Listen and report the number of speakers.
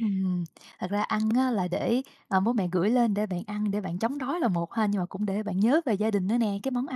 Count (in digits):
1